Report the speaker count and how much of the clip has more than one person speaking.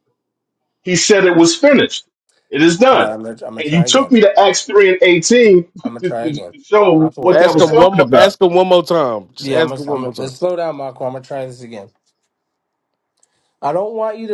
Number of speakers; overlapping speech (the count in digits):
3, about 23%